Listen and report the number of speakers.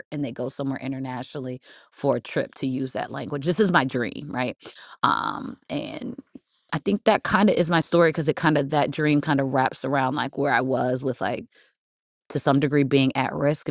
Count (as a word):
one